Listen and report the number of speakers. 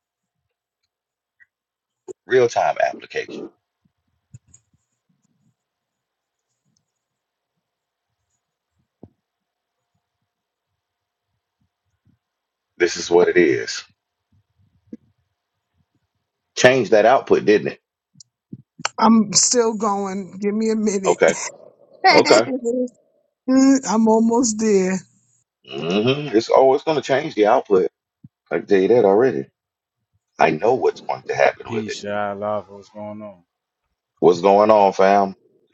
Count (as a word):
three